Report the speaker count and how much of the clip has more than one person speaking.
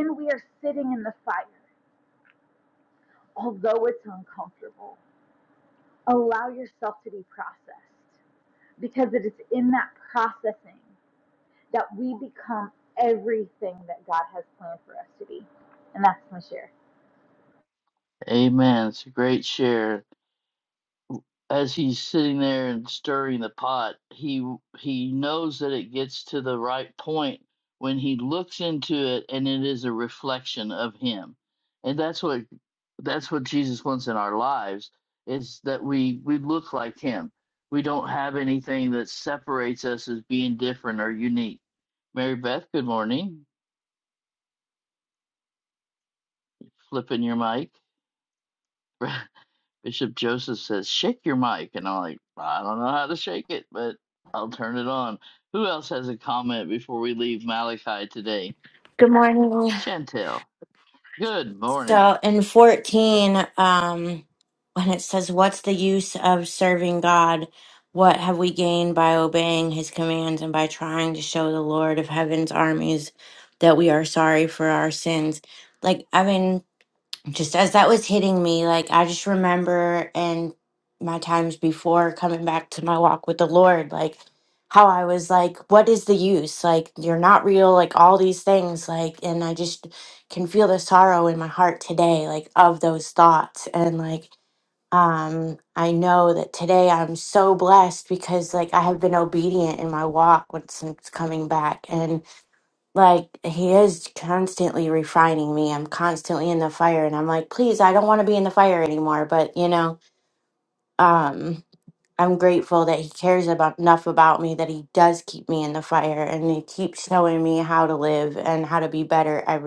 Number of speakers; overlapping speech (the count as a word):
three, under 1%